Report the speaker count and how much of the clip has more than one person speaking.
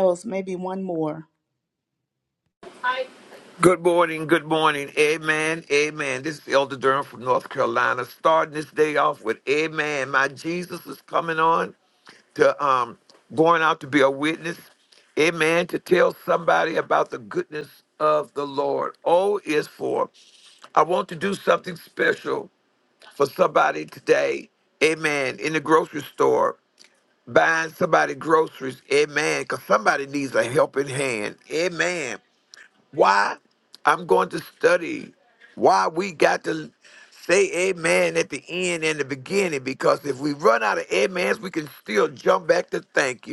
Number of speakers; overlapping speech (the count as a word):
two, no overlap